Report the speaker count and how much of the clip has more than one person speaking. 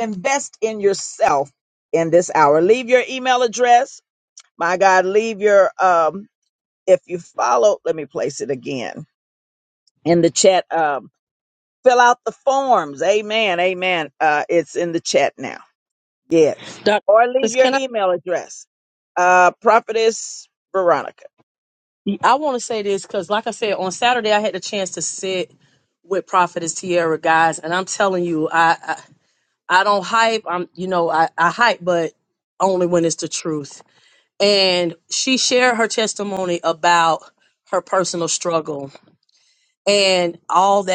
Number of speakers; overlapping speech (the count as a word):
two, about 1%